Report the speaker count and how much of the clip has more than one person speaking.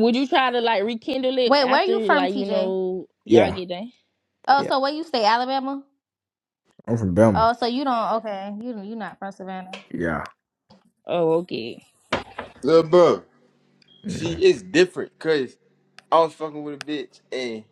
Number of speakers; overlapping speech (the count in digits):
4, about 12%